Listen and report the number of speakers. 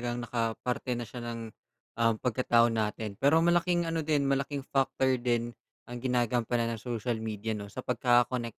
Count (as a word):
one